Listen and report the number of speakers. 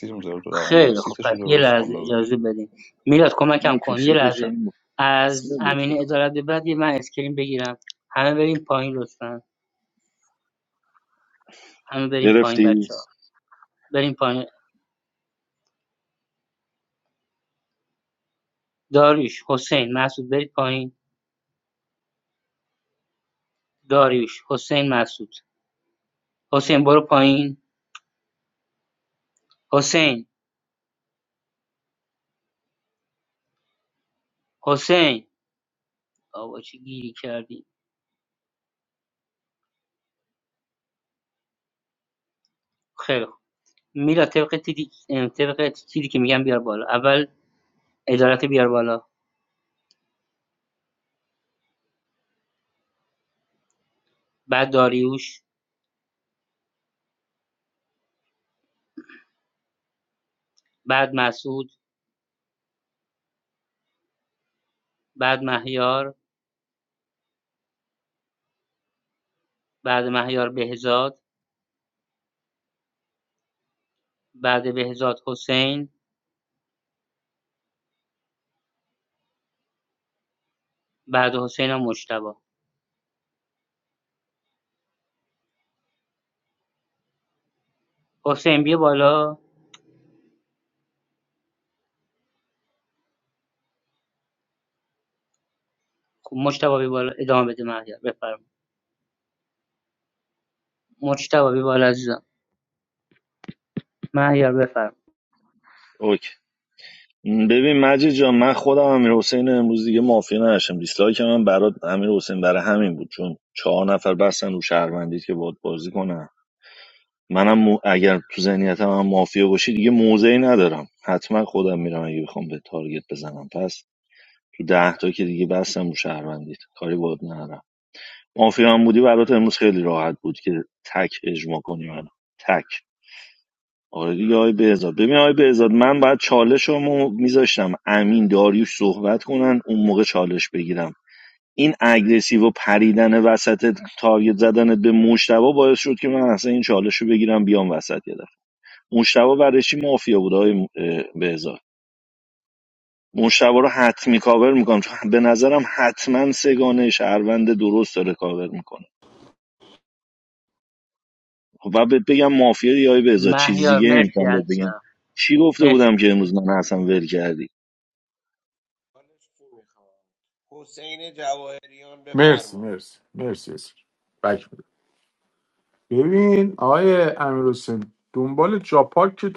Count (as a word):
five